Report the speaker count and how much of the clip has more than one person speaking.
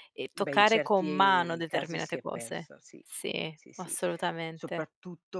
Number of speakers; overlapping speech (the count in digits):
2, about 52%